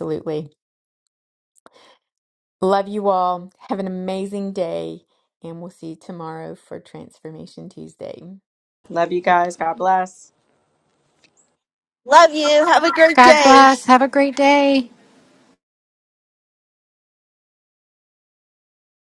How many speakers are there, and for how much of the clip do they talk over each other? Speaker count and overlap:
4, about 3%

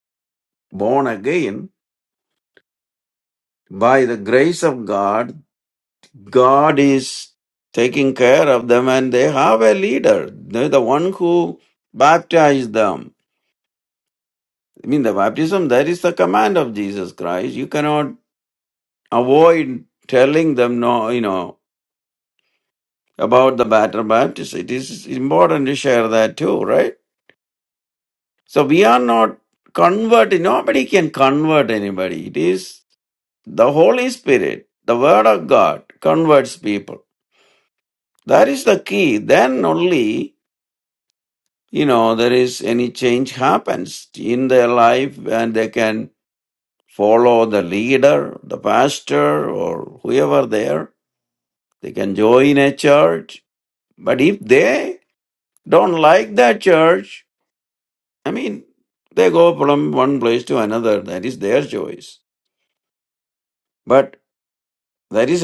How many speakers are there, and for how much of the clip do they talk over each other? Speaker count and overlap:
1, no overlap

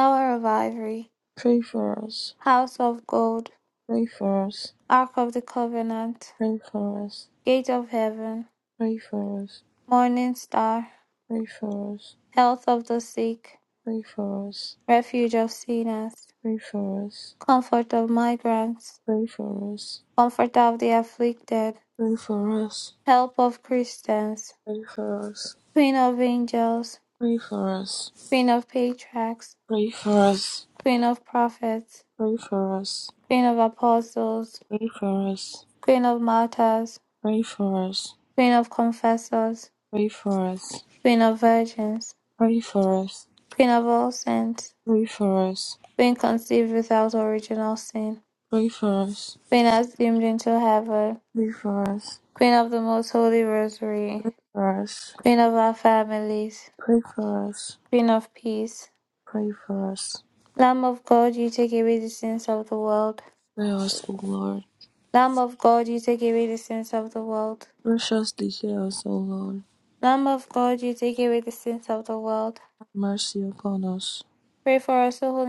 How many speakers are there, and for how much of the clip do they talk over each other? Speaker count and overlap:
2, under 1%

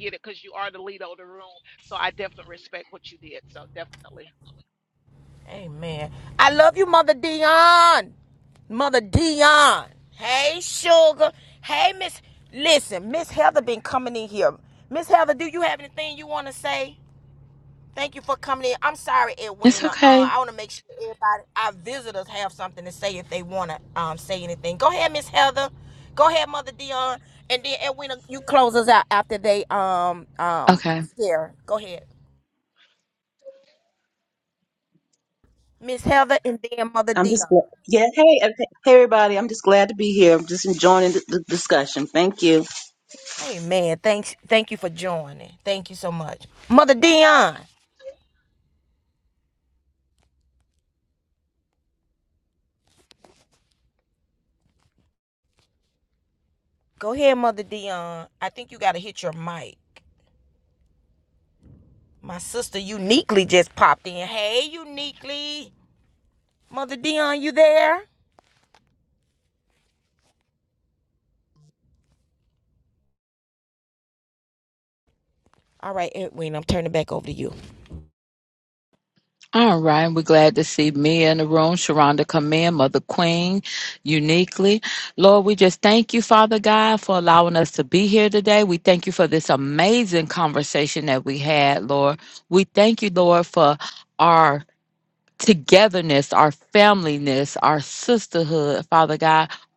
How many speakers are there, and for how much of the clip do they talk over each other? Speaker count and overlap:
4, about 1%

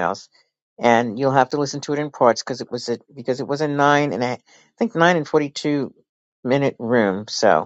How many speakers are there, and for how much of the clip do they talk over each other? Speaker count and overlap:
1, no overlap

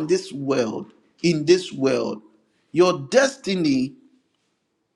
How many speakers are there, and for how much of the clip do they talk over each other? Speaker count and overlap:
1, no overlap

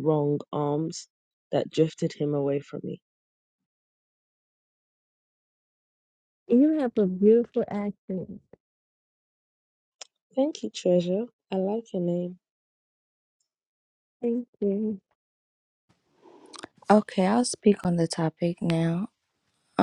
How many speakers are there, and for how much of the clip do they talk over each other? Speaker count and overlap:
3, no overlap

